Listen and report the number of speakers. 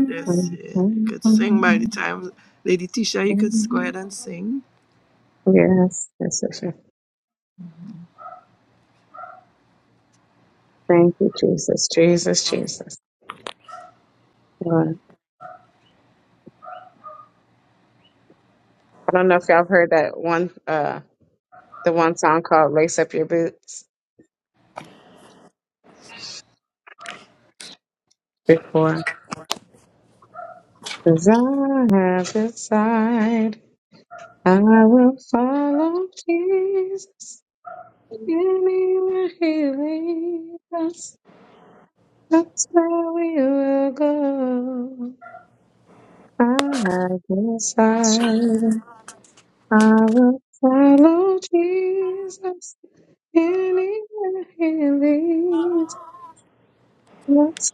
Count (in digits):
2